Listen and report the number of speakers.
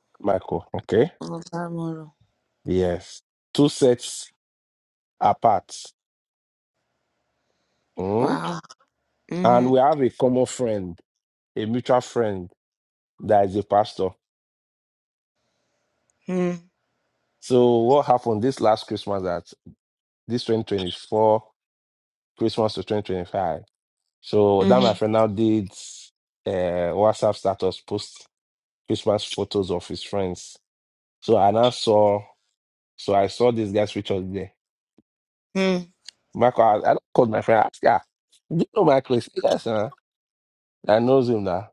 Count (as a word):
two